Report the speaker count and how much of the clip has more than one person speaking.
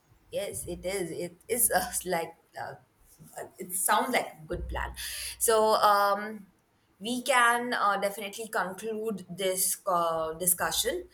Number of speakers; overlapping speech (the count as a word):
one, no overlap